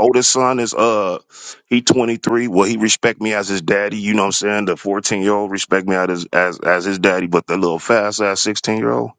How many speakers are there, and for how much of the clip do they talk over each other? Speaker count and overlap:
1, no overlap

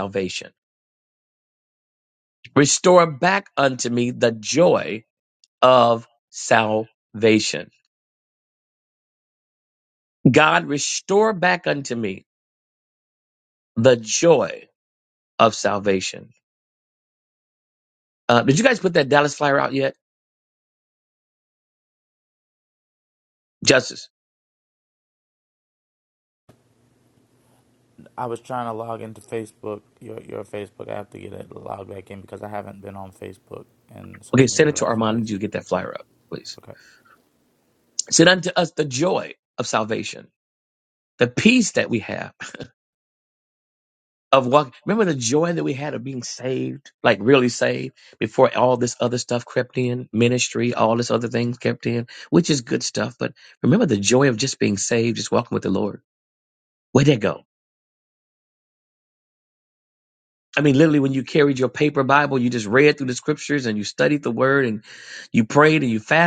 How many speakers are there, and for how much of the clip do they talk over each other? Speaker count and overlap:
2, about 1%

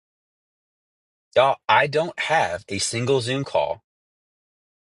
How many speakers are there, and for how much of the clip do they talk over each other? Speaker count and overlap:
1, no overlap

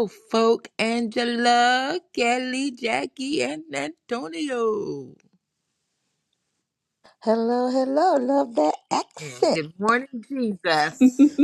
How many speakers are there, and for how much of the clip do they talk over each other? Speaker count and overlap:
2, about 3%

